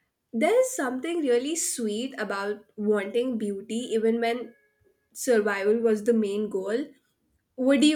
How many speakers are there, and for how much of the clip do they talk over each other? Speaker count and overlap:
1, no overlap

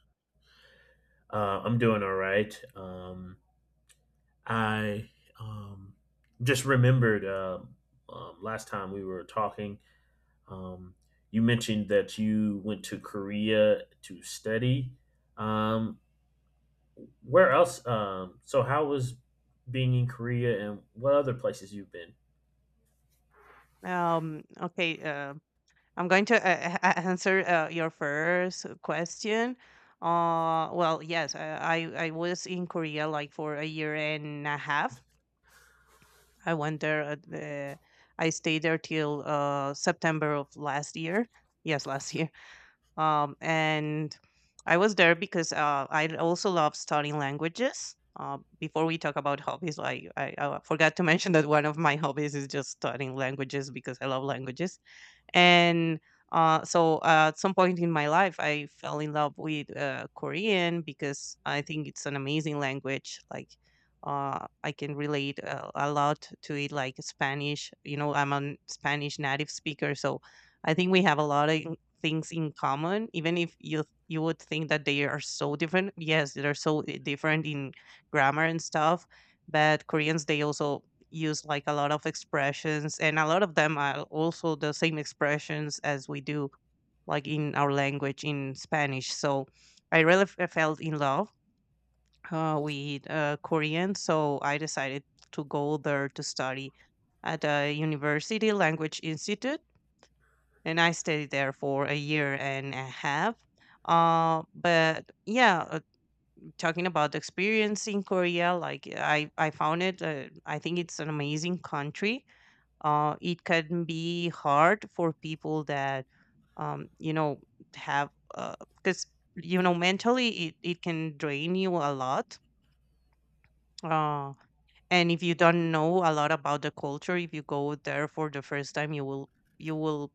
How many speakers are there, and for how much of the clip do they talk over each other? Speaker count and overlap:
2, no overlap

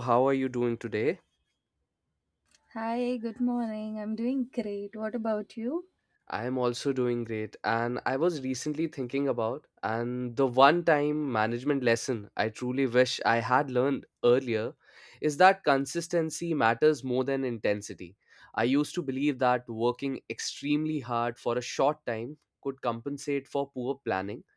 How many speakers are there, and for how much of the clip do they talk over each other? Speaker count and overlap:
2, no overlap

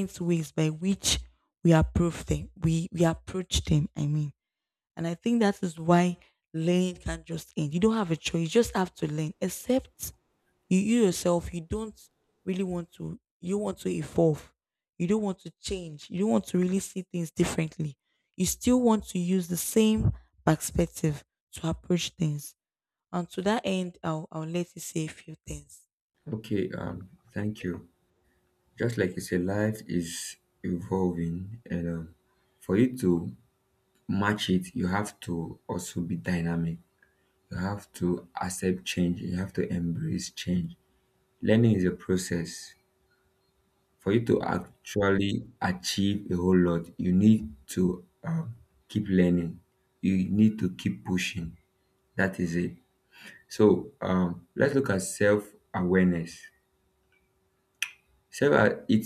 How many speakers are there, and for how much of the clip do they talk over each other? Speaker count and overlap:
2, no overlap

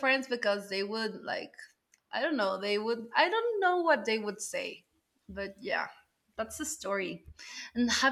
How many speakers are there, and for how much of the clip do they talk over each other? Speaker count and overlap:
1, no overlap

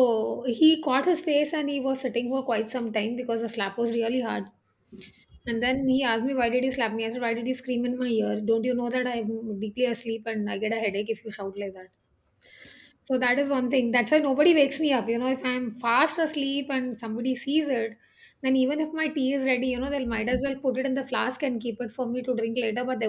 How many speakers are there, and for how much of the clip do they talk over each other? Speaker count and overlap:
1, no overlap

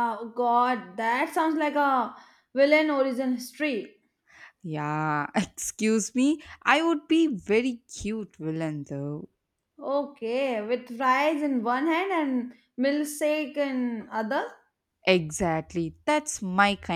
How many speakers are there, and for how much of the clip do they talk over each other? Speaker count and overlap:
2, no overlap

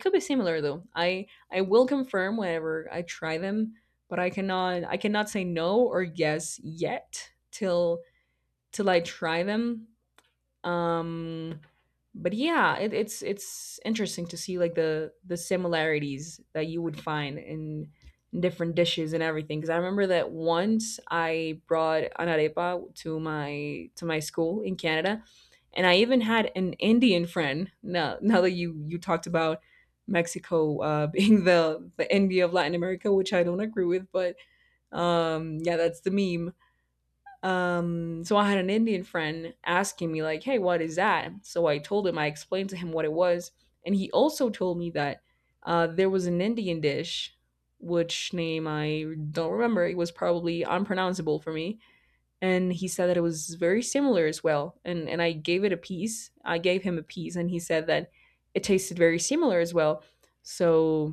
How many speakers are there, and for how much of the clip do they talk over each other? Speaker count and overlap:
1, no overlap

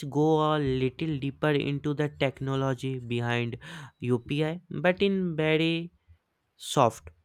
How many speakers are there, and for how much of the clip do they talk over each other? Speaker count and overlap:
1, no overlap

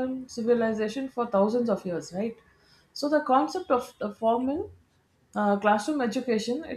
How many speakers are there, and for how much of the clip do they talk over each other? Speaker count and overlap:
1, no overlap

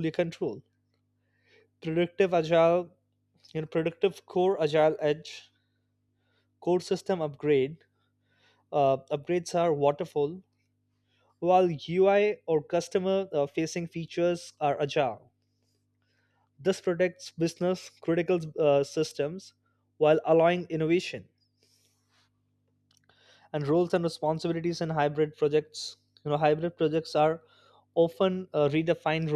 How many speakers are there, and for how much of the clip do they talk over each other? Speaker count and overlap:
1, no overlap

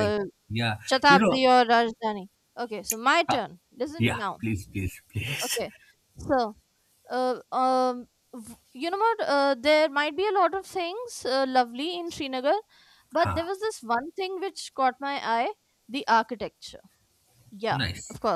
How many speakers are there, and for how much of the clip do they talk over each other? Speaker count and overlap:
2, about 13%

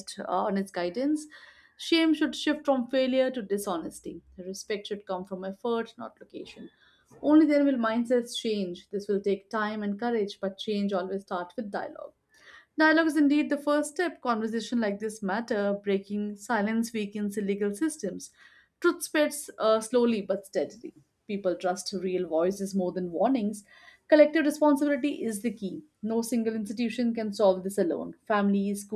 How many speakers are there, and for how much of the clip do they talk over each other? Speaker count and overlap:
1, no overlap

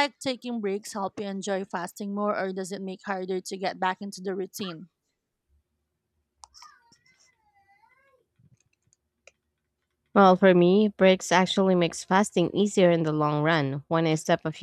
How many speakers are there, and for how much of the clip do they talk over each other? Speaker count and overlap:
2, no overlap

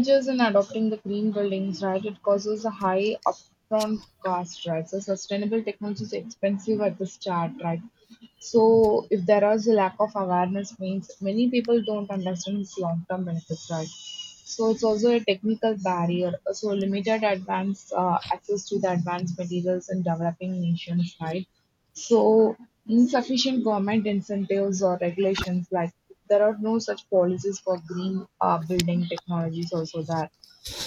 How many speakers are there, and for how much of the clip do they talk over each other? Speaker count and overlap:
1, no overlap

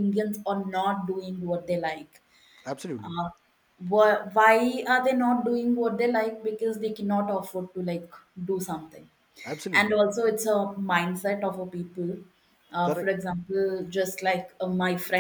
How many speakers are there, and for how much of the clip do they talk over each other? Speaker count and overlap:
2, about 4%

